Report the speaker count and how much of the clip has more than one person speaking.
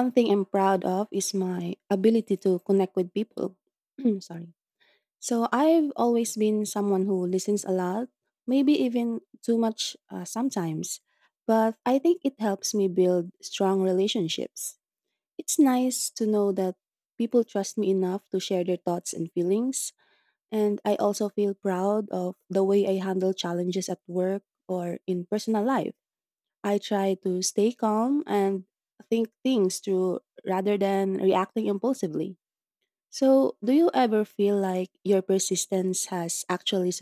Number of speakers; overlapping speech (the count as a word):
one, no overlap